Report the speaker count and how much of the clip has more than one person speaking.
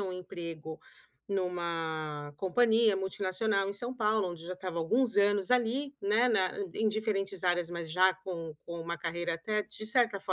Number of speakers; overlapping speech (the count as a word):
one, no overlap